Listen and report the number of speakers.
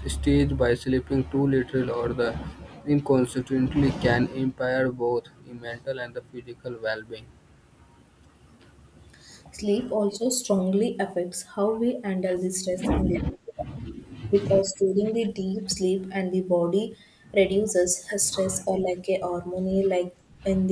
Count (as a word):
two